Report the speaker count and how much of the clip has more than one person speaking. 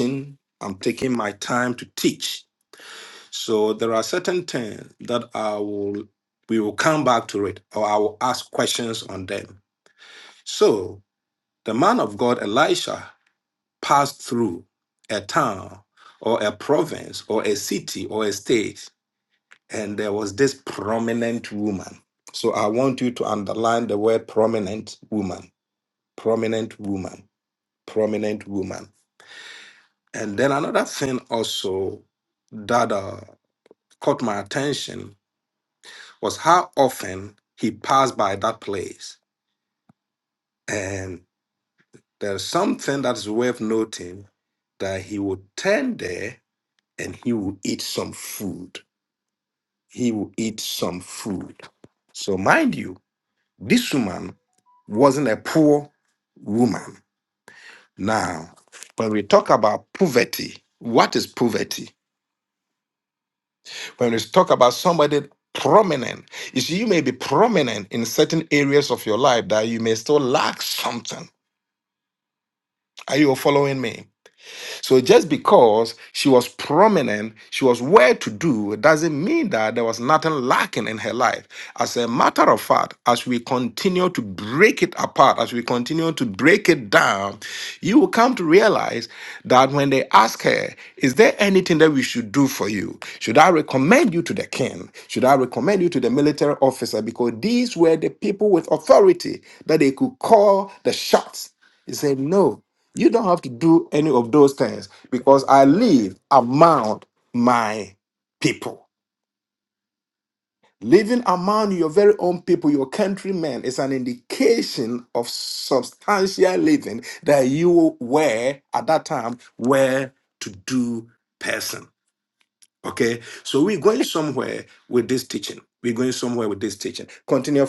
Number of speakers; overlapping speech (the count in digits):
1, no overlap